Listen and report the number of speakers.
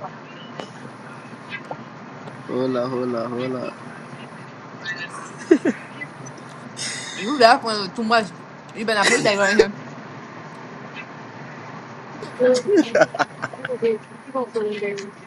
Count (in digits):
3